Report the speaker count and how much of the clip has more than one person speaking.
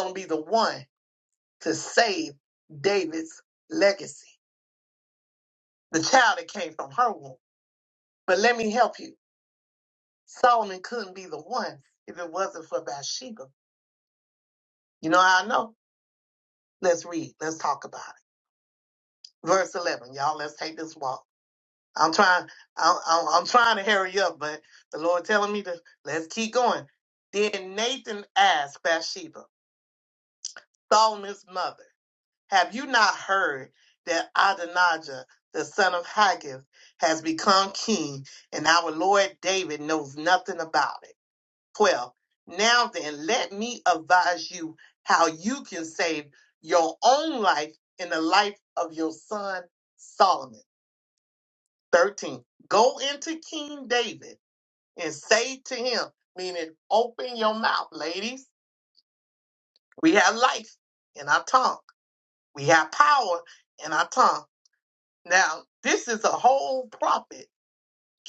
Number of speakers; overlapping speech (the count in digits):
1, no overlap